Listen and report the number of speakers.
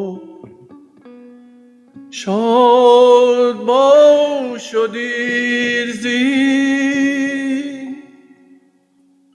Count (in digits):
1